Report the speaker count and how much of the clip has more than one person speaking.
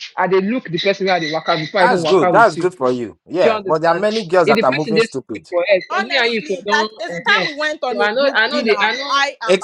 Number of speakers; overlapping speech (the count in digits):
3, about 58%